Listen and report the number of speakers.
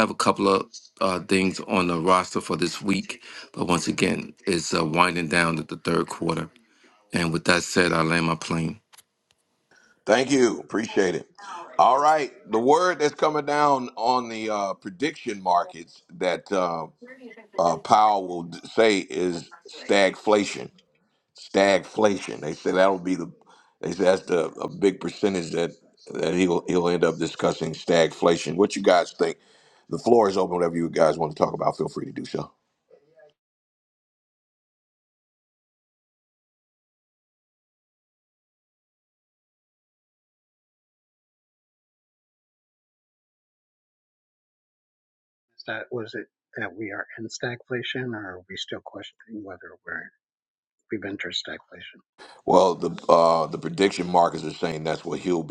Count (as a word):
three